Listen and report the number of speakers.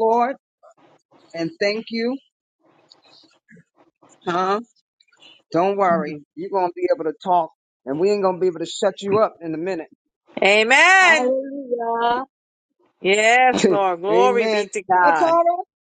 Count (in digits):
3